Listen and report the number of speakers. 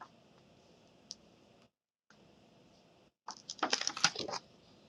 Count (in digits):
0